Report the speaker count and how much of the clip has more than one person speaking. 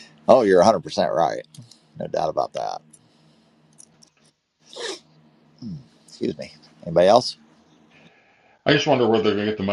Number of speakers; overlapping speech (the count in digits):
2, no overlap